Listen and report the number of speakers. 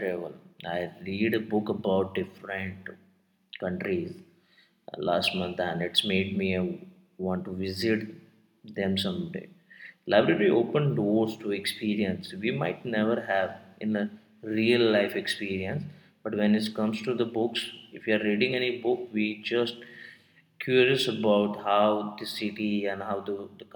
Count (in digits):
1